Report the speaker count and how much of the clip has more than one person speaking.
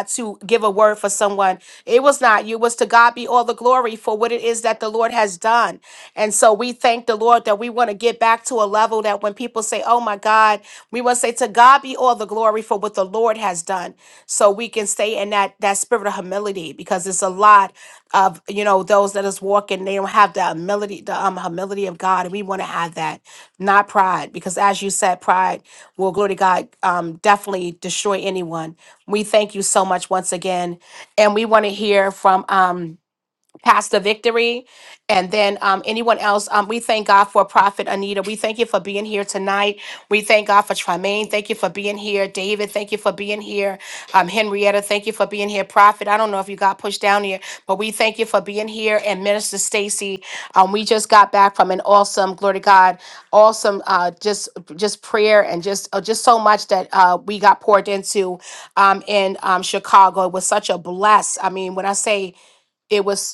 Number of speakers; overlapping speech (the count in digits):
1, no overlap